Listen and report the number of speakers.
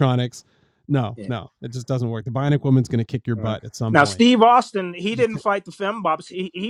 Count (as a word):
two